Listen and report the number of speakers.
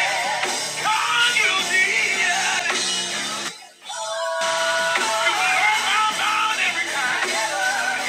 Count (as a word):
zero